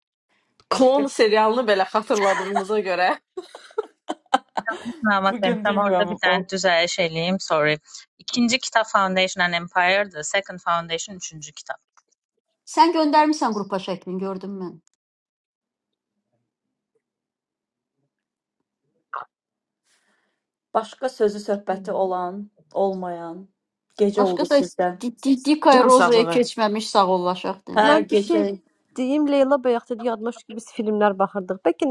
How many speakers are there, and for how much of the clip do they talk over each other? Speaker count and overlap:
five, about 11%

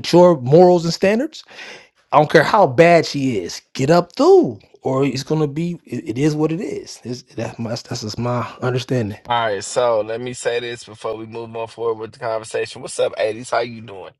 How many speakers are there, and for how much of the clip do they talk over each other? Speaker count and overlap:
two, no overlap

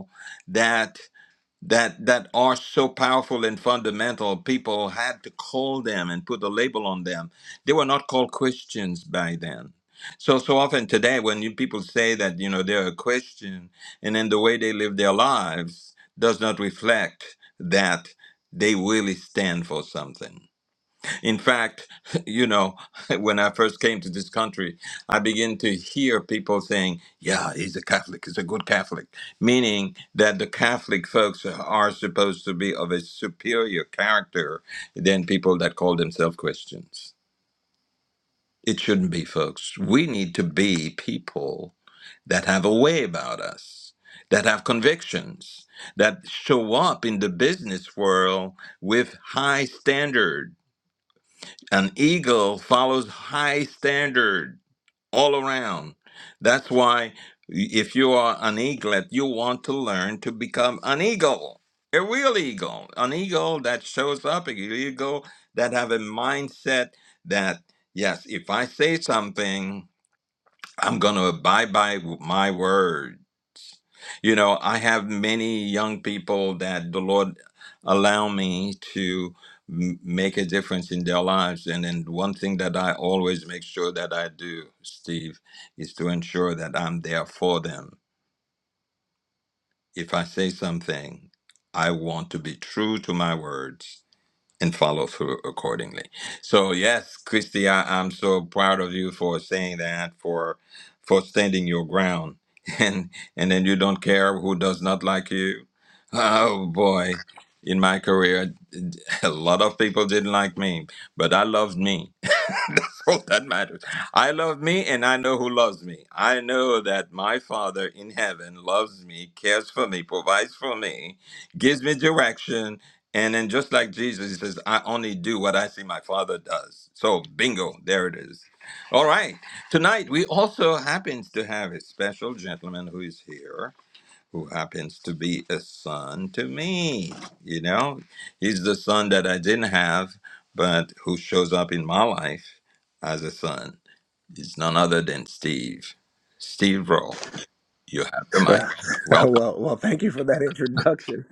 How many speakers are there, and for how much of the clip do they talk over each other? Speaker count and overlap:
two, under 1%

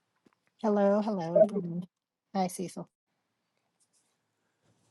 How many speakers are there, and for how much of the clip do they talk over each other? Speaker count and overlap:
one, no overlap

